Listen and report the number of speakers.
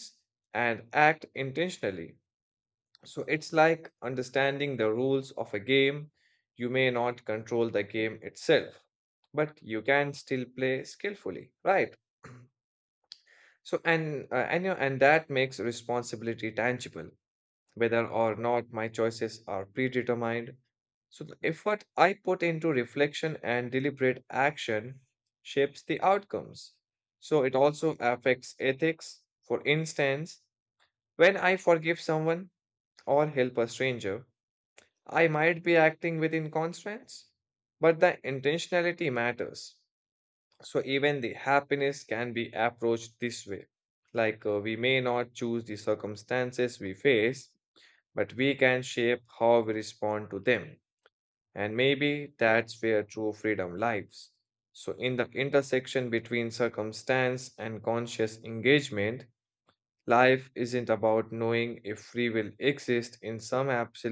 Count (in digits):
1